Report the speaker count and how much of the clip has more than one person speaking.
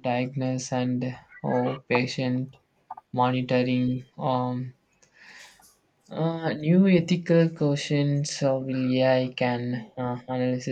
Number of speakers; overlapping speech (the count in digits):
1, no overlap